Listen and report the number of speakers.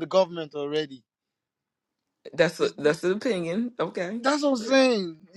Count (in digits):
2